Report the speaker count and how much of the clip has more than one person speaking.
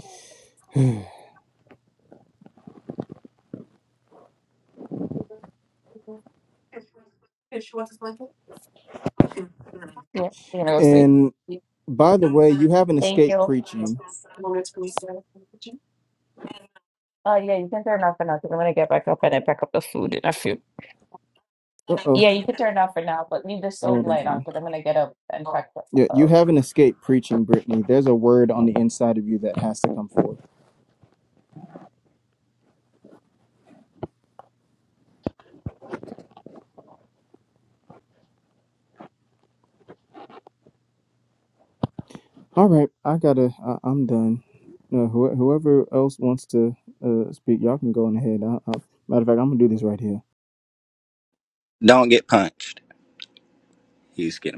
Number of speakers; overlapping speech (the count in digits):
3, about 4%